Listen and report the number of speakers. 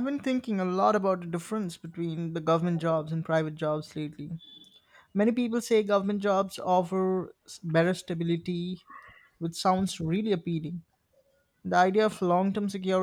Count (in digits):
1